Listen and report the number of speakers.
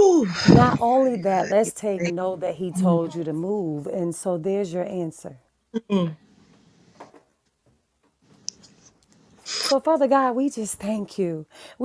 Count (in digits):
2